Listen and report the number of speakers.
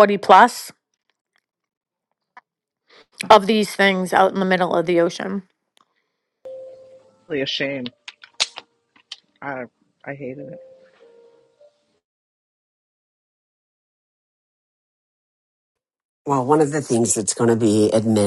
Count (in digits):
3